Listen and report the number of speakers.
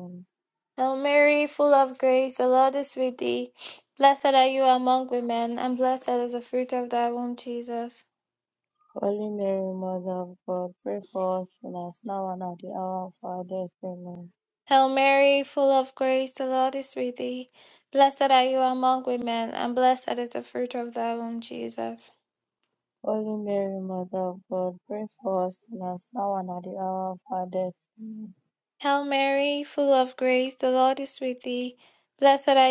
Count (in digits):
2